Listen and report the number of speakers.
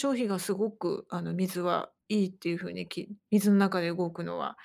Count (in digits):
1